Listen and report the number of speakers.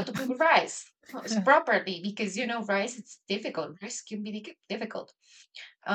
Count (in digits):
1